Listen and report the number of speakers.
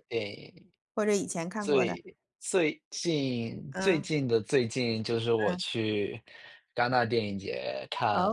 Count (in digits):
2